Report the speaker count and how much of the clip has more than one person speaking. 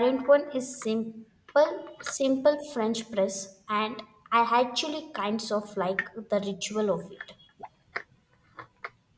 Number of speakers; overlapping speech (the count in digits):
1, no overlap